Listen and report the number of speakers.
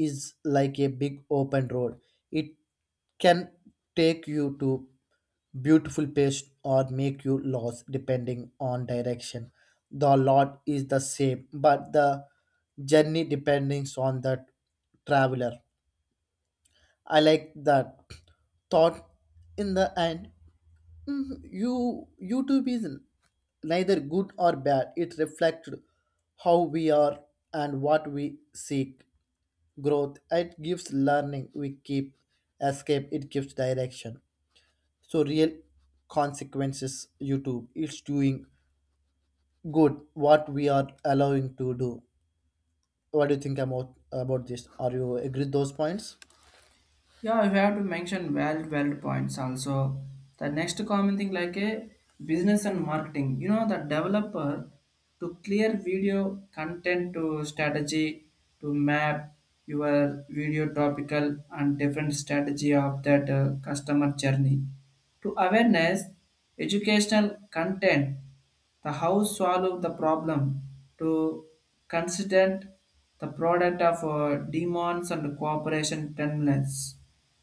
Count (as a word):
two